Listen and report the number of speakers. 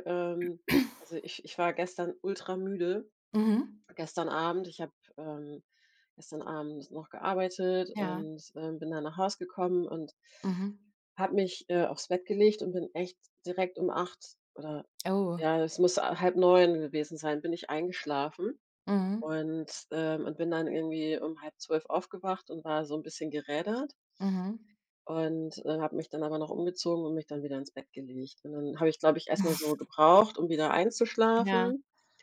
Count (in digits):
2